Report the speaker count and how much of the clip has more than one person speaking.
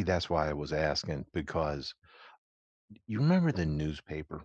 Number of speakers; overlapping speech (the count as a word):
one, no overlap